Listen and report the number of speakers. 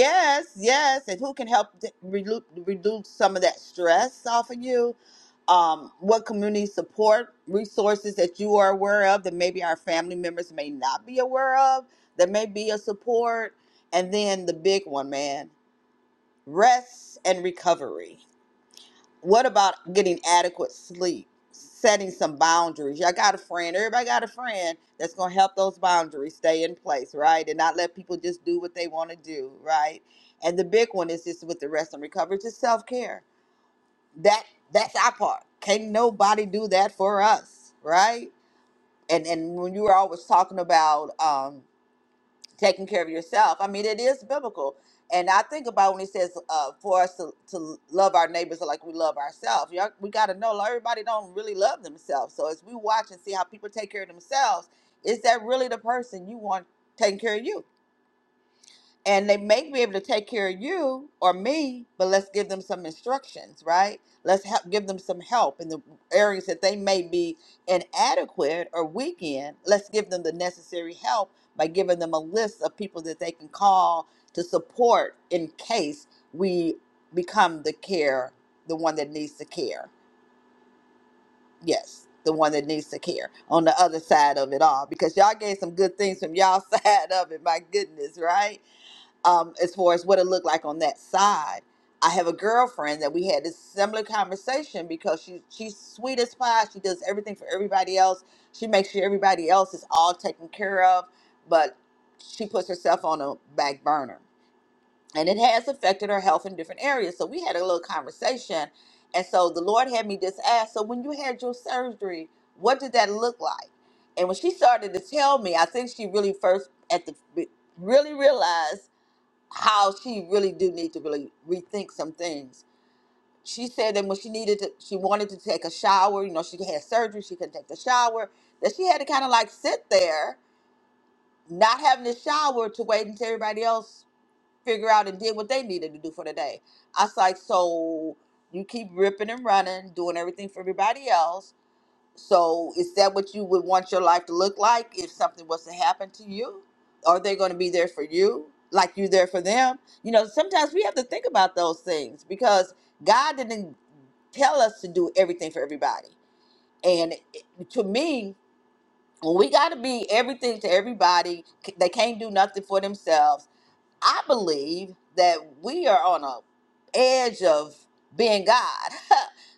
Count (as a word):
one